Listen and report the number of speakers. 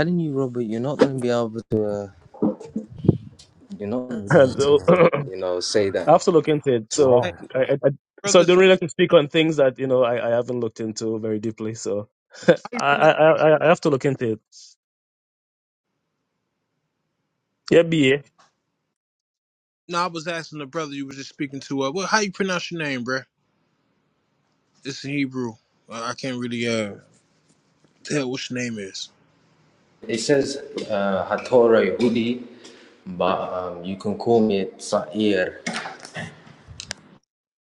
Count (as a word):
three